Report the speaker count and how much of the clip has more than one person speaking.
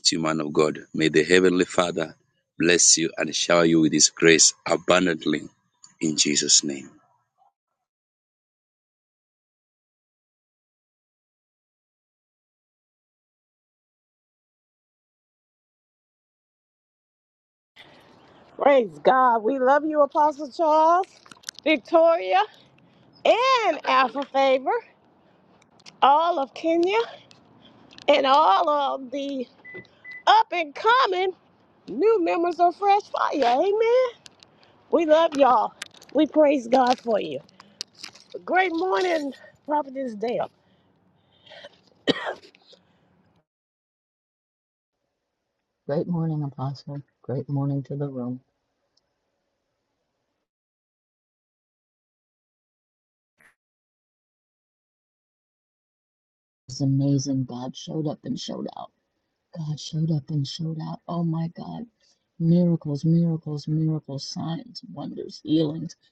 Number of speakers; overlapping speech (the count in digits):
3, no overlap